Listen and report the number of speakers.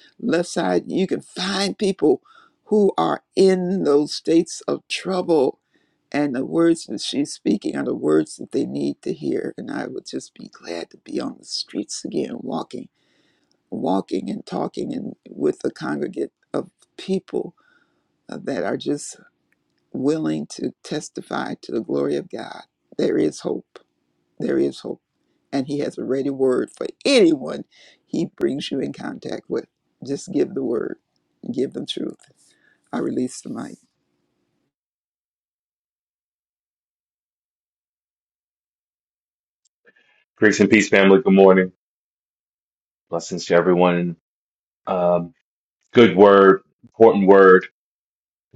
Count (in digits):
2